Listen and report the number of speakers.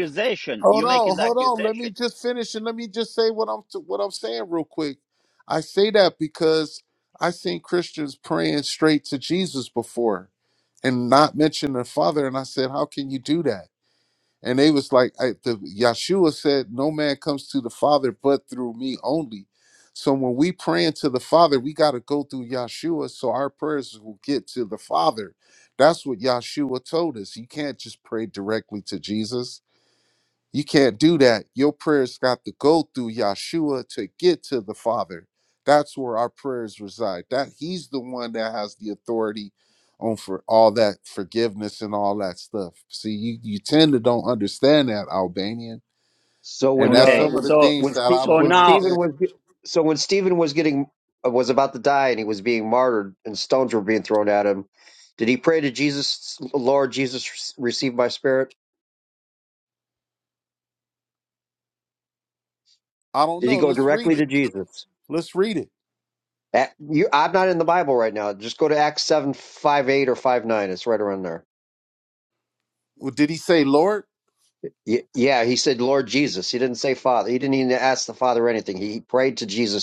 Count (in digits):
3